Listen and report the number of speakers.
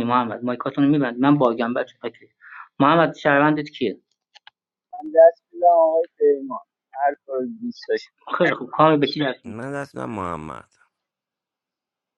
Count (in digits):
3